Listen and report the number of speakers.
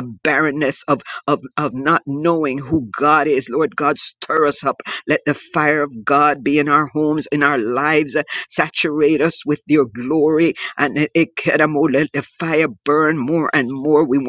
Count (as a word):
one